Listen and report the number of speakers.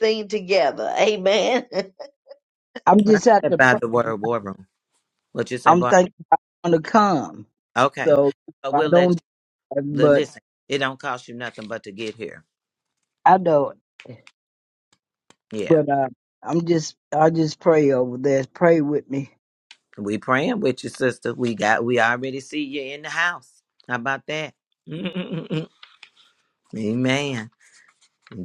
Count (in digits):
3